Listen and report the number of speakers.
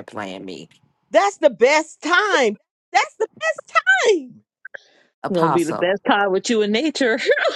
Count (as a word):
three